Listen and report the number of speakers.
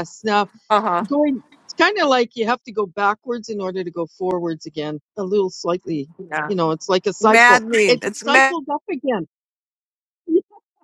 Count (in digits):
2